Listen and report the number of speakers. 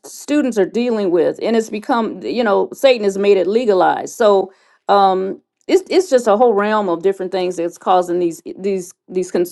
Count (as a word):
one